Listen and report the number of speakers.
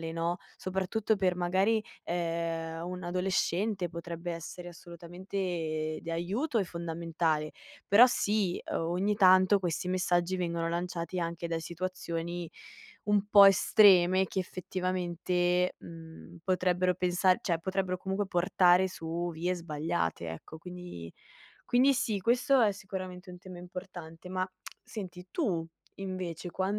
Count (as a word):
one